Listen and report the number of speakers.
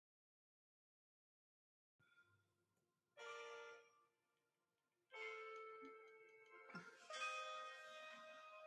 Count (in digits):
0